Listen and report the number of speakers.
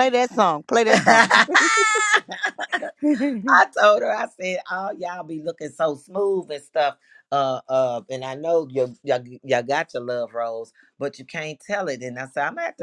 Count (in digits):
2